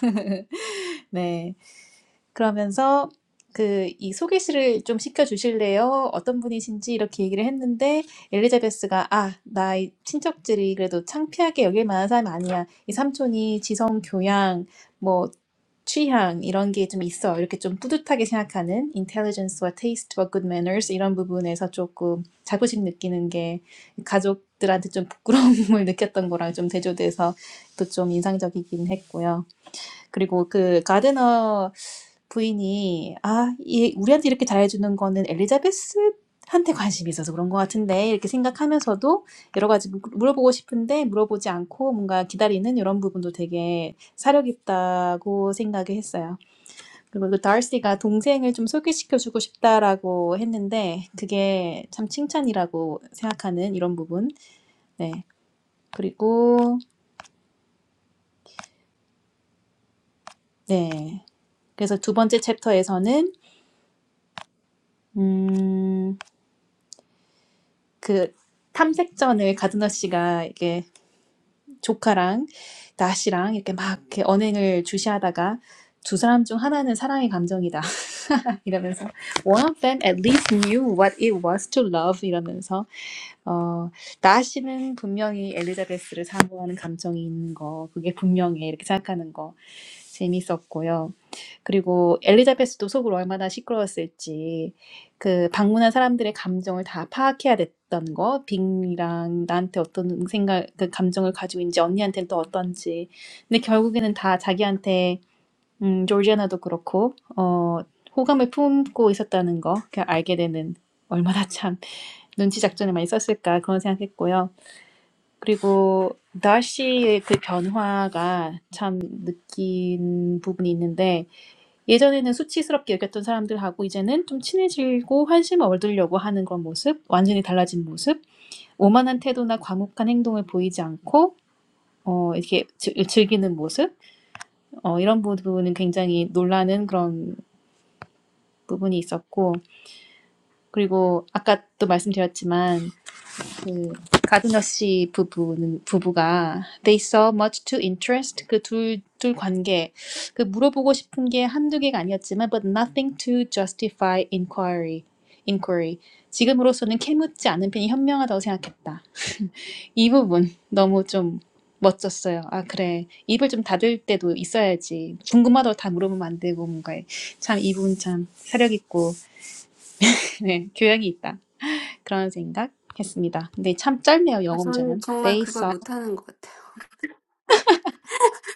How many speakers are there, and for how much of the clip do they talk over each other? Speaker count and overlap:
2, about 1%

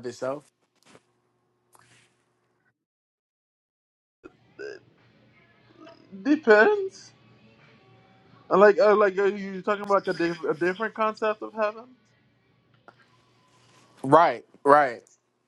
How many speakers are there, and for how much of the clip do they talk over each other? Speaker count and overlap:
2, no overlap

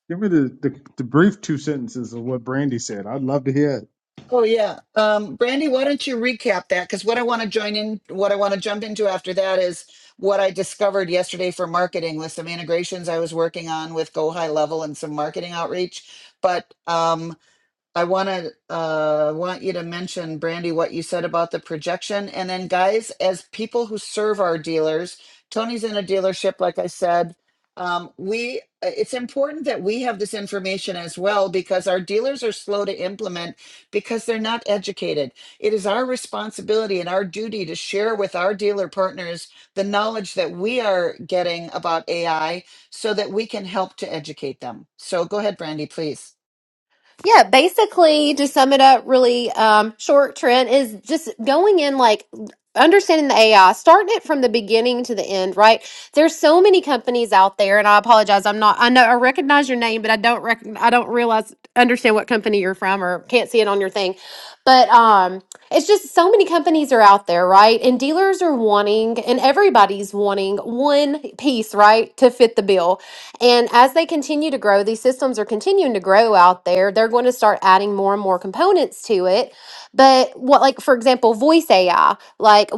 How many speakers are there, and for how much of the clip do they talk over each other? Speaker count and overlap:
3, no overlap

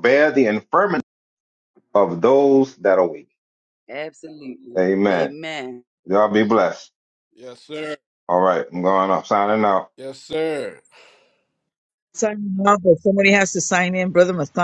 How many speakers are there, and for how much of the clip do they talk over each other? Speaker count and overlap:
4, about 4%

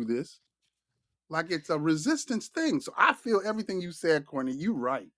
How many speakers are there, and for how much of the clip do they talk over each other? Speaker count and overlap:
1, no overlap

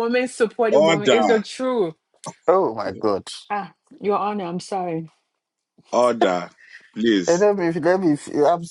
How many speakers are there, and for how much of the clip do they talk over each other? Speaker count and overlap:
3, about 6%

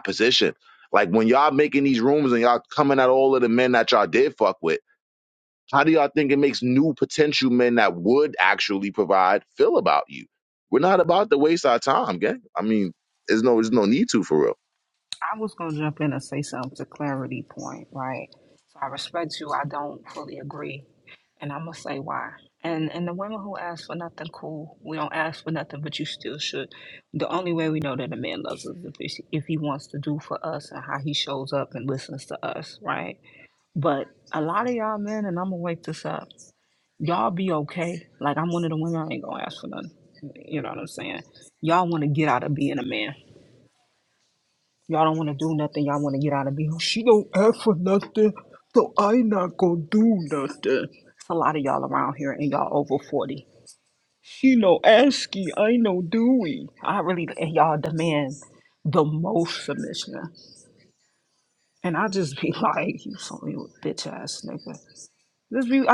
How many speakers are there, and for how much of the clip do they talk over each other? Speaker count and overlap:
2, no overlap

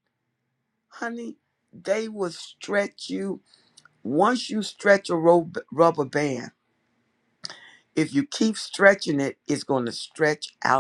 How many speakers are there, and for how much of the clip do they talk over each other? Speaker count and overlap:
1, no overlap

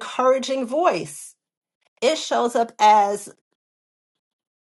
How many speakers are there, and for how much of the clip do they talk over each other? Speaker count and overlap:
1, no overlap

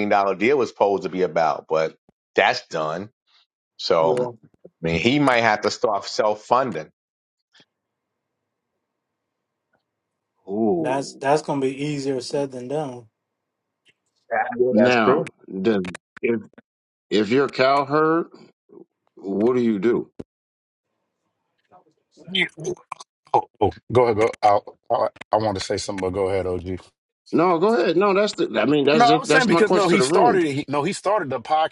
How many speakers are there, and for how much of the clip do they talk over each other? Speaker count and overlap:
4, about 8%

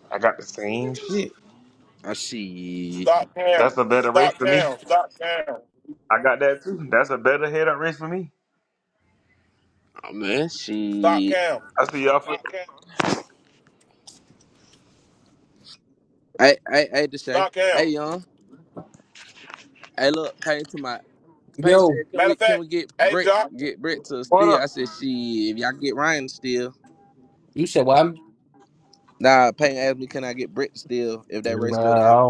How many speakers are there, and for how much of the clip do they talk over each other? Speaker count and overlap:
4, about 13%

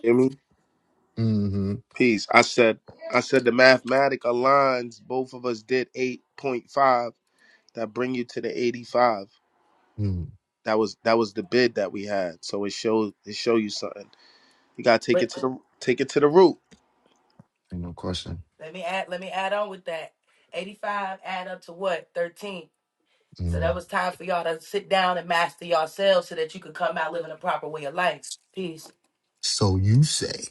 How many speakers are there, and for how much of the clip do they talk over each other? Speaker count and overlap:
3, about 1%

